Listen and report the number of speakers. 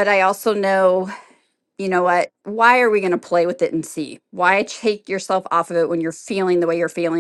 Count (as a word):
one